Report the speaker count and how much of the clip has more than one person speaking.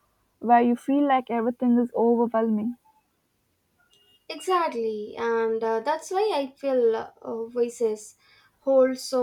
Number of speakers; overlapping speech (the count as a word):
two, no overlap